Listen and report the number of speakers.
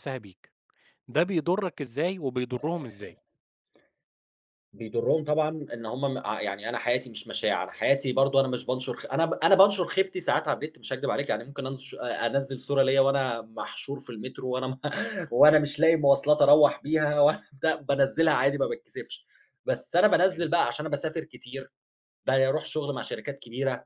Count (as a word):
two